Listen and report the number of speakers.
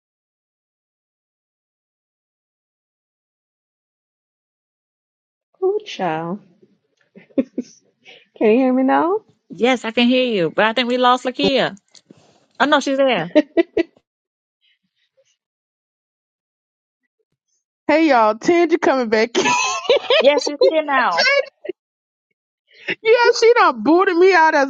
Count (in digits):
3